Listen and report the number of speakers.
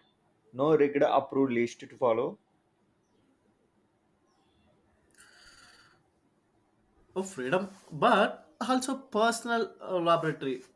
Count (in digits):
2